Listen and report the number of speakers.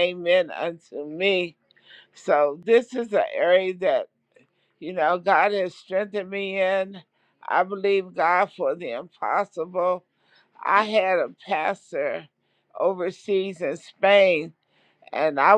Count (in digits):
1